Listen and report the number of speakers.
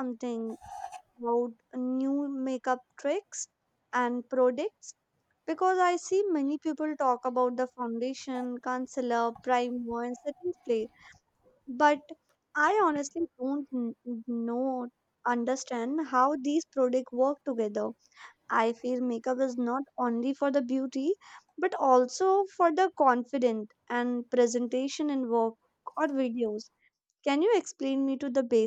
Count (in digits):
1